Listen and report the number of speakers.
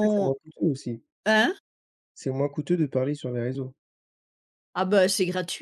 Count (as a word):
two